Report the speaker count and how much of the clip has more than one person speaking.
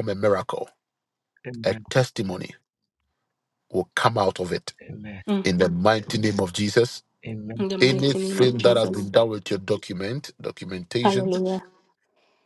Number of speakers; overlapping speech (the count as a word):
three, about 14%